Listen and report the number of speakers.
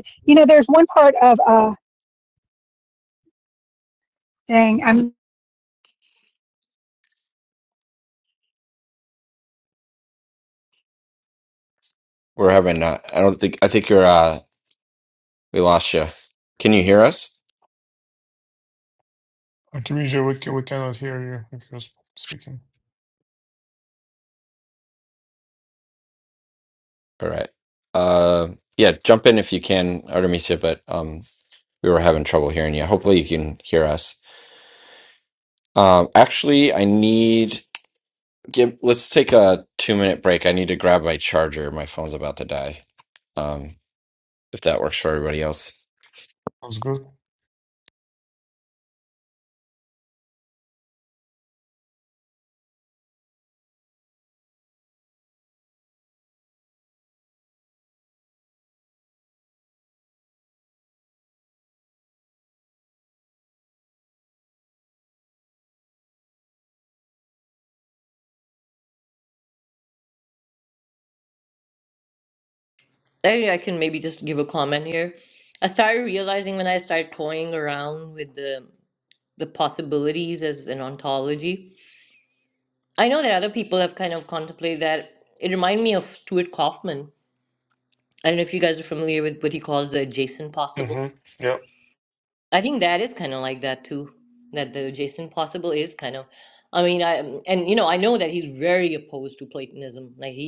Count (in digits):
4